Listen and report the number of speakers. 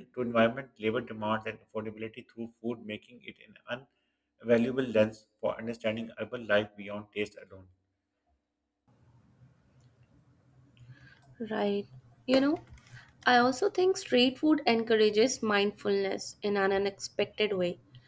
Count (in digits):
2